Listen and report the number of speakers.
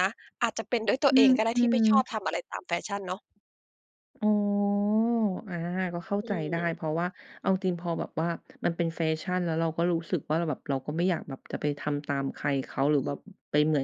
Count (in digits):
2